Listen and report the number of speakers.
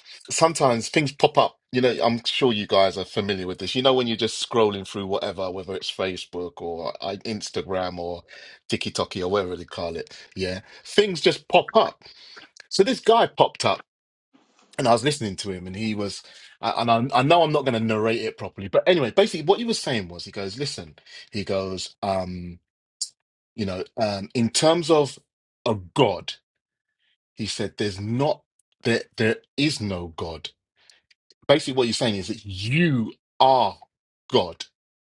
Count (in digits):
1